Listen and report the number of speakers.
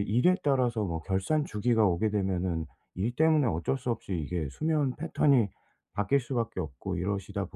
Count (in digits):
1